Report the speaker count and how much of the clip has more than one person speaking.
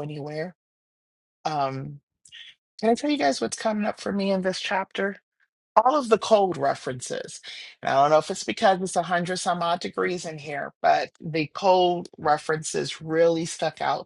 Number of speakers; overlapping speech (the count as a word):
one, no overlap